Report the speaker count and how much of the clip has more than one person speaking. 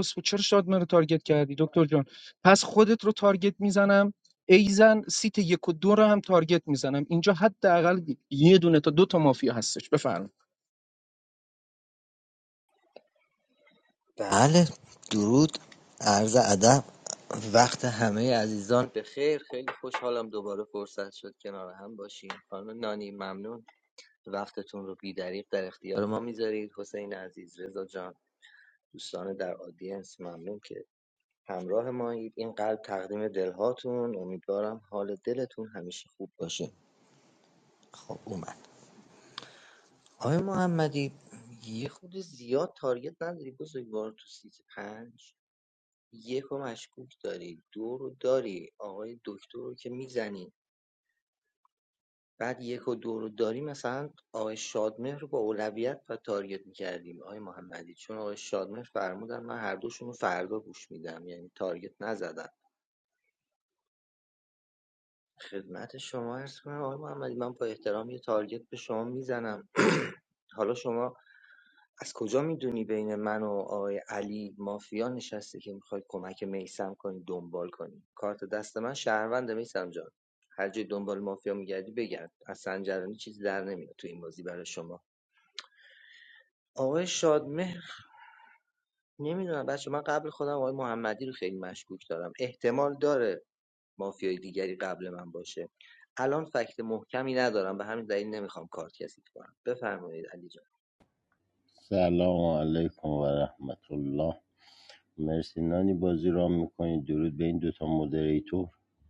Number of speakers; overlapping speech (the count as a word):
three, no overlap